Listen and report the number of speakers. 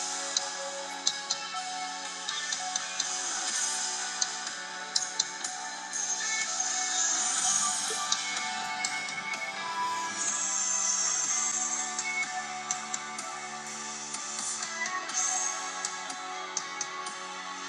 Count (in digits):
0